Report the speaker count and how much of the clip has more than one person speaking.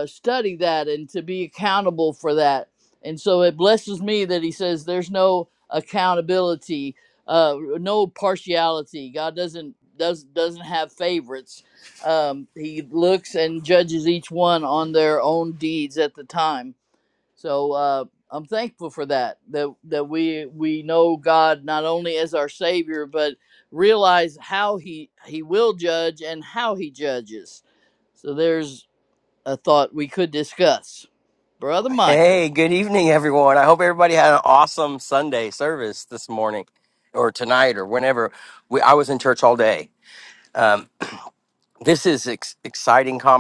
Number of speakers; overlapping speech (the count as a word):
two, about 1%